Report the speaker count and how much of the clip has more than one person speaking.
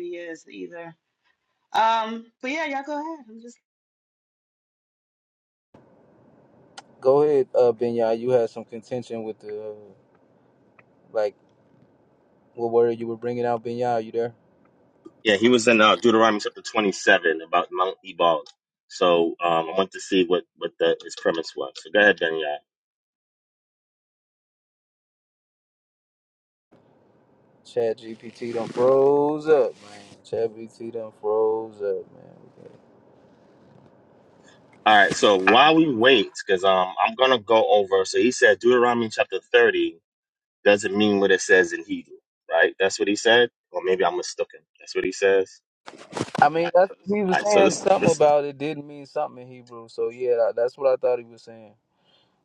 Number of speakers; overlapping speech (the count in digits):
3, about 1%